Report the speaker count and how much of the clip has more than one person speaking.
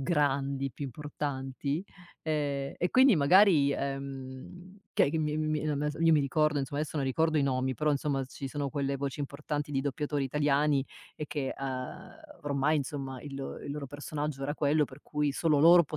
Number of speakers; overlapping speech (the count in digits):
1, no overlap